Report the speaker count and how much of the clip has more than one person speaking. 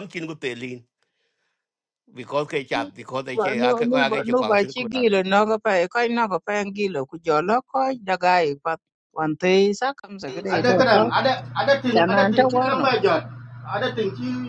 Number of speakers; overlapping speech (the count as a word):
three, about 21%